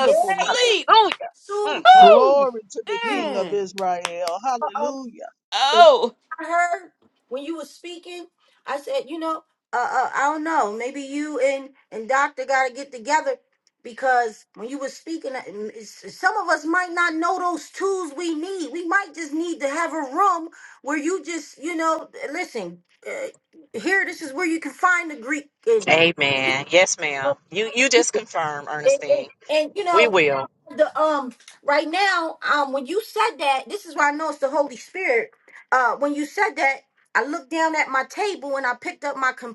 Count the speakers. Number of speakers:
4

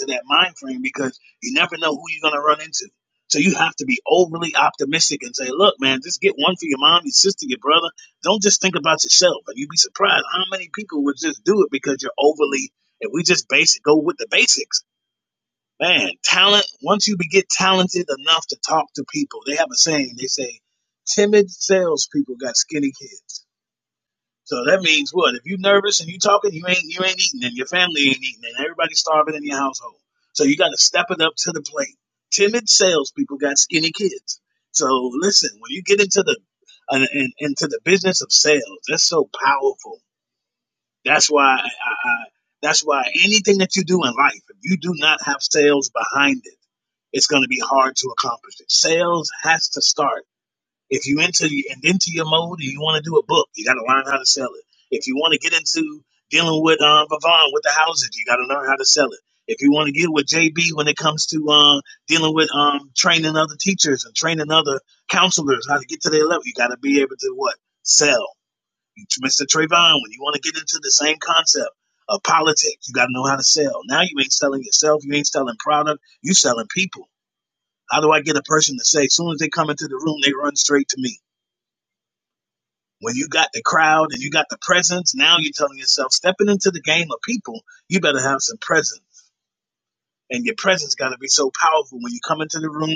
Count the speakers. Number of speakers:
1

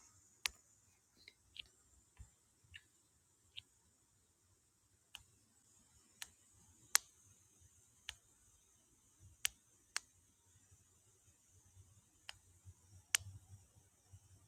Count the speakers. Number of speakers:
0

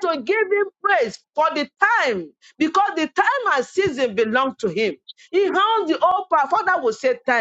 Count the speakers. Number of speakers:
1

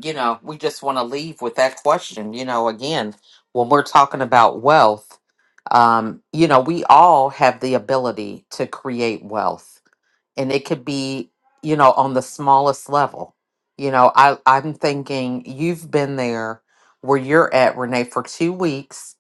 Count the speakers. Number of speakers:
1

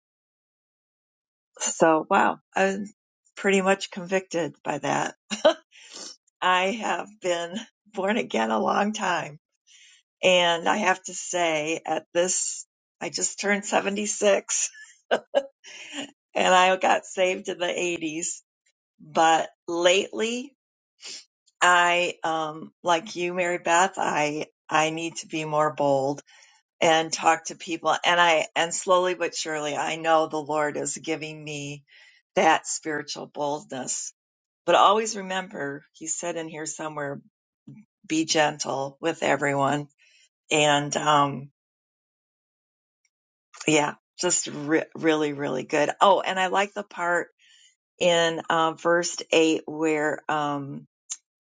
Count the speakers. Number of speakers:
1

